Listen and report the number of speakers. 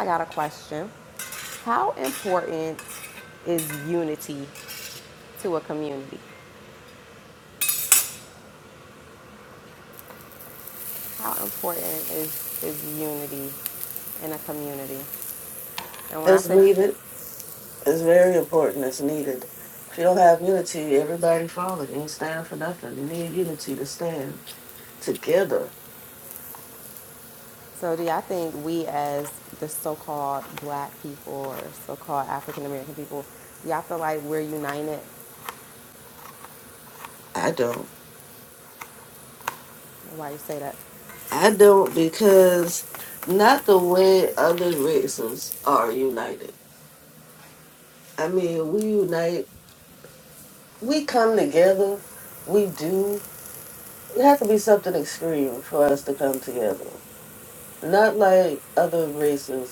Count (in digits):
2